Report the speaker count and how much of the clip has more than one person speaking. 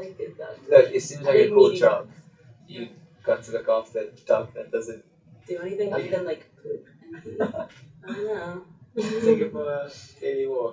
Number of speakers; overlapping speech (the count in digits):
2, about 17%